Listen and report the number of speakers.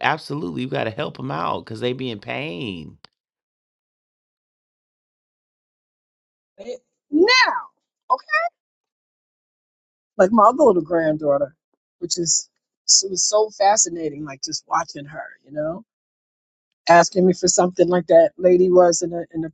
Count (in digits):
2